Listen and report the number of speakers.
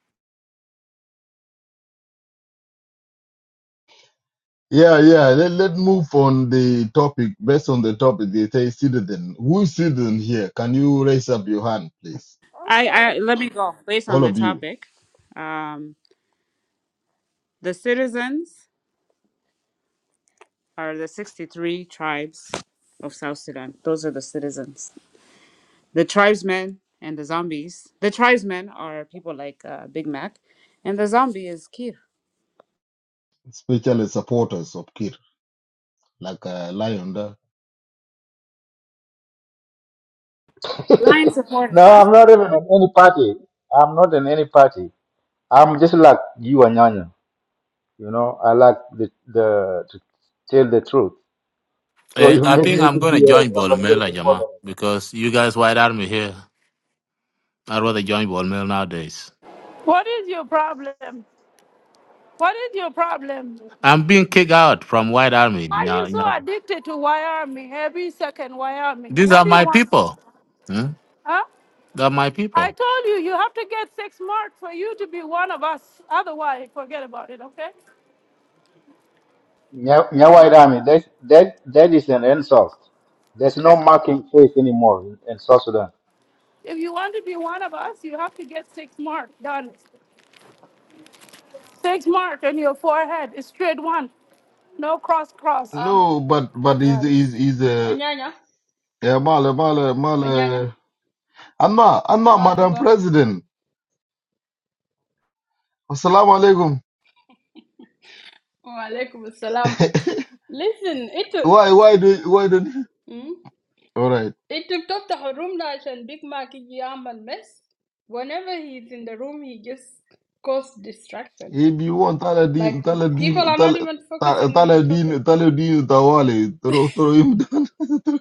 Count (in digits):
6